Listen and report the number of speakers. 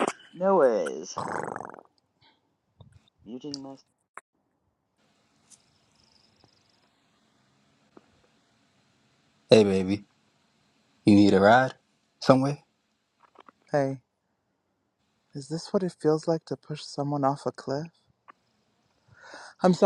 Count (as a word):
three